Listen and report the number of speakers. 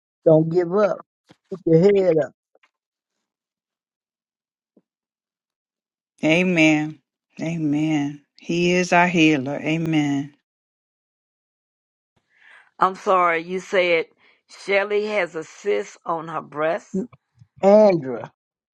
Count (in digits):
3